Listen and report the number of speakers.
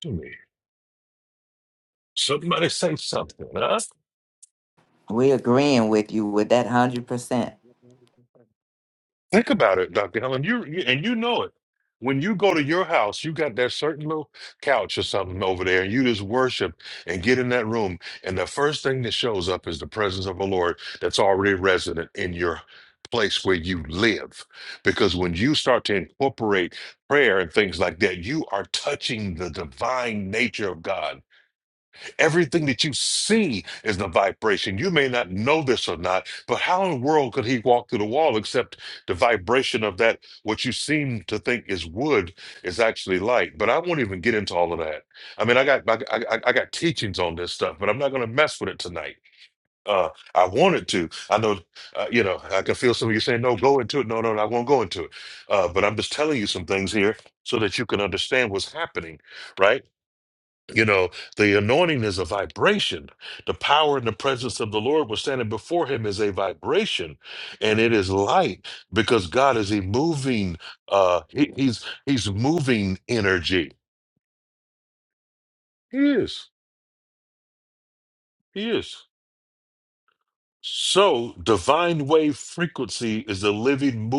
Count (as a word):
two